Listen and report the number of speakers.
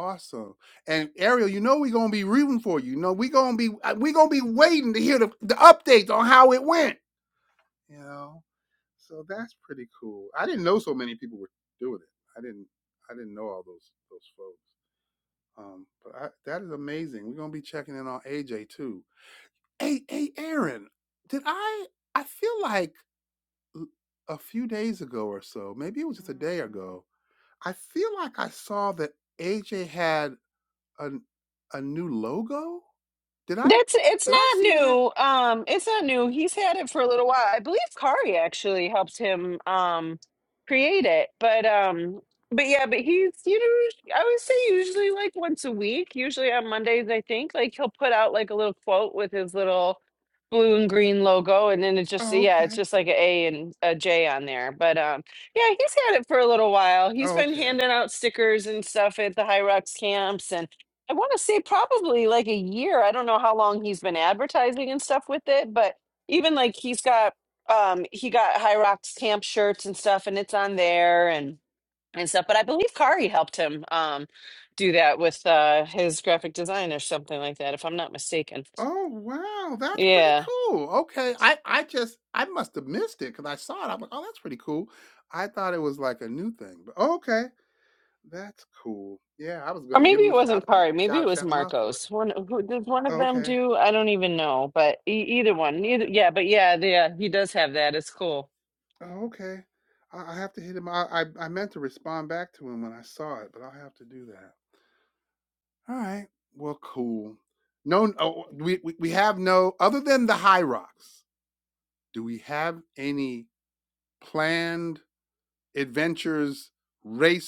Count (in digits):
2